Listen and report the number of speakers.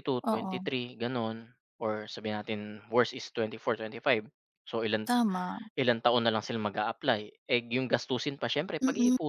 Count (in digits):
2